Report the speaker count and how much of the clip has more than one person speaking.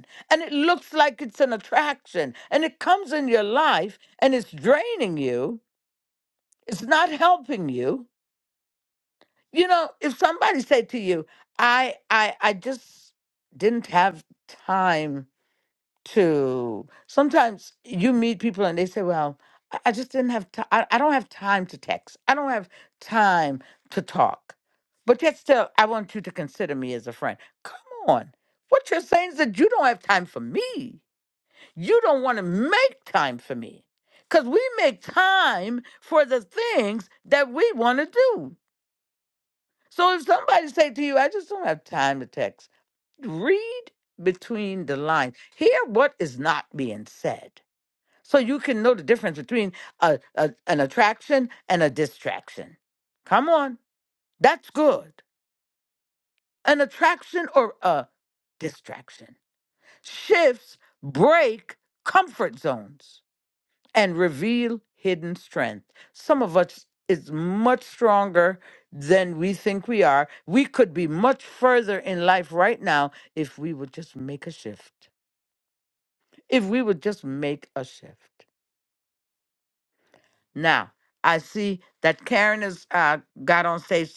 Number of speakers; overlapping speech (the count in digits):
1, no overlap